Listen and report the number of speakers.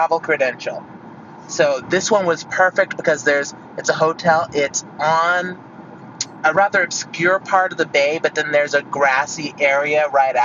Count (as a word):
one